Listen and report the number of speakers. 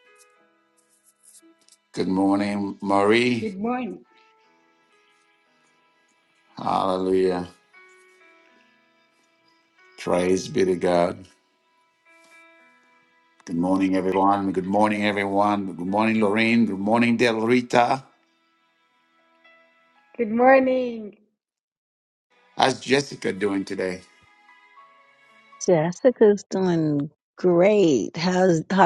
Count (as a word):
three